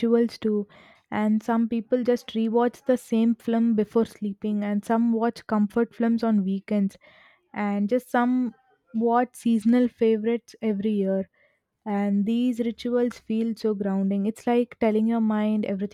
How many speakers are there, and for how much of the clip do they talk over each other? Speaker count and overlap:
1, no overlap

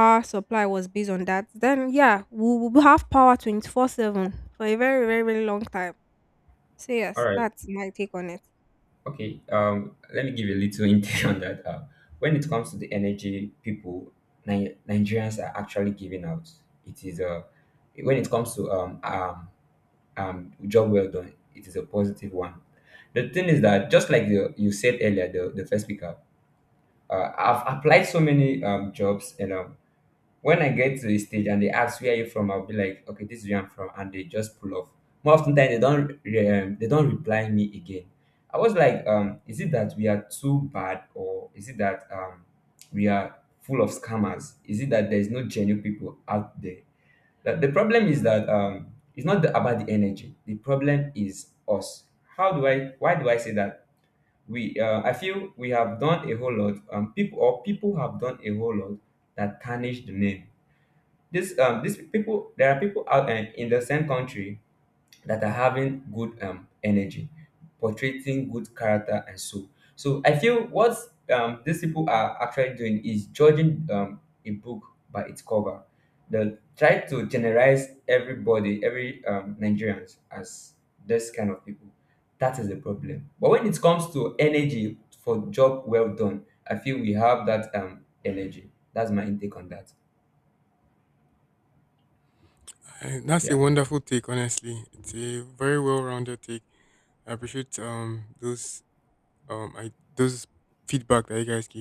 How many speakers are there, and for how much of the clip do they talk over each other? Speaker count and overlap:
3, under 1%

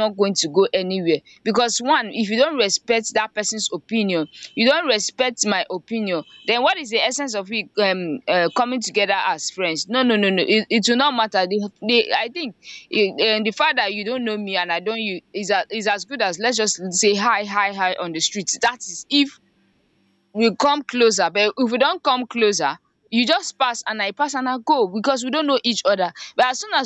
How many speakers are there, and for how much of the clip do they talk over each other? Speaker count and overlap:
1, no overlap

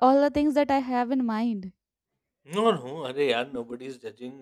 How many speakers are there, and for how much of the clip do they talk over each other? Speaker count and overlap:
2, no overlap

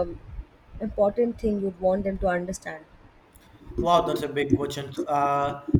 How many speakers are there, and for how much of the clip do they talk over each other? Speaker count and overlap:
2, no overlap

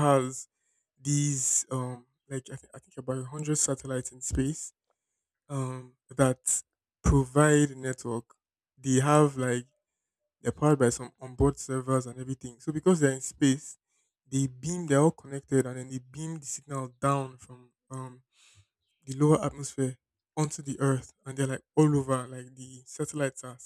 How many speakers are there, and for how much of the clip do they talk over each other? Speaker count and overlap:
1, no overlap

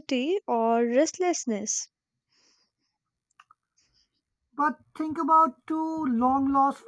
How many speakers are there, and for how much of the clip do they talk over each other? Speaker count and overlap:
2, no overlap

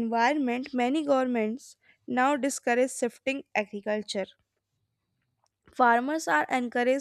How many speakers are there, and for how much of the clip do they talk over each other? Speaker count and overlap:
1, no overlap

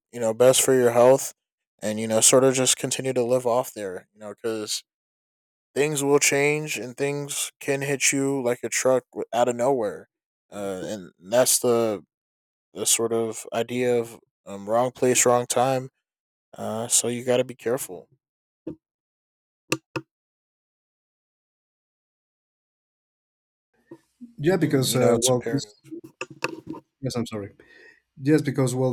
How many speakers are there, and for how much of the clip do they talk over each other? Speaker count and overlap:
2, about 3%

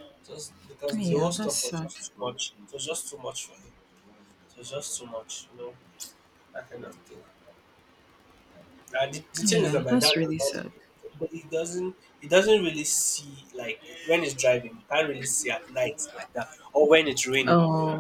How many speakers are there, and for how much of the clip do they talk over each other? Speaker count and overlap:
2, about 13%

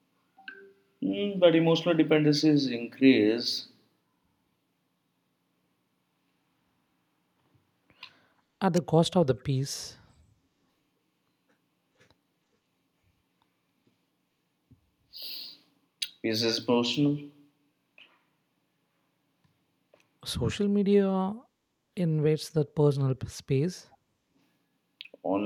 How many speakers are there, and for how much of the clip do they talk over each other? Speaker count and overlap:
2, no overlap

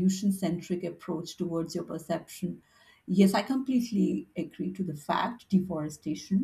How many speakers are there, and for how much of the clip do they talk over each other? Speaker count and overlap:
1, no overlap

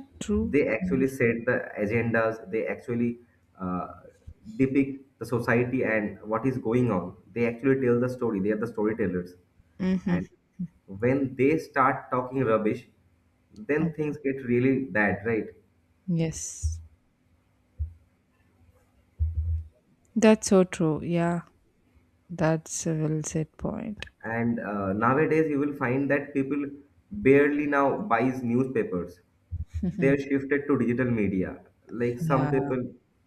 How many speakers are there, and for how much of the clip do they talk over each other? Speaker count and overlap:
2, about 4%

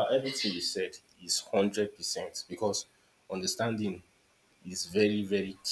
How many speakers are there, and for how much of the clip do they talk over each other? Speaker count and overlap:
1, no overlap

